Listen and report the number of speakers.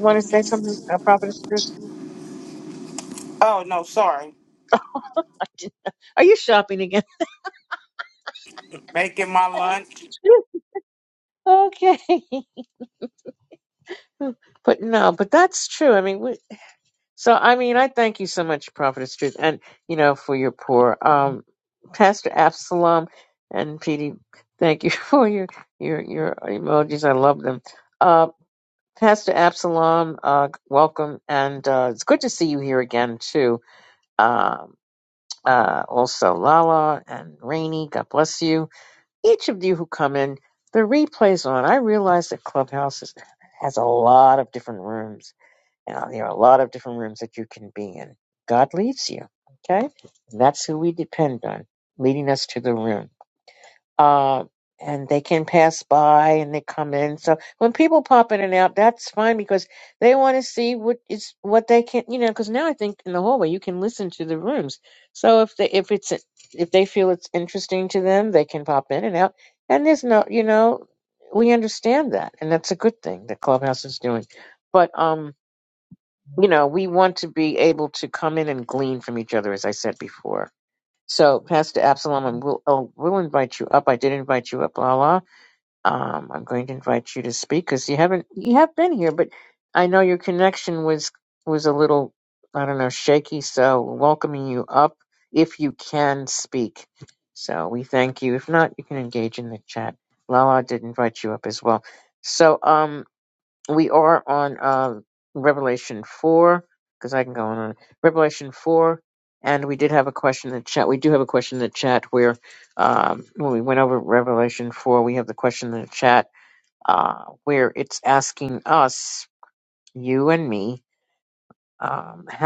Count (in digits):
2